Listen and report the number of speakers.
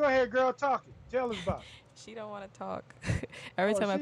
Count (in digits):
2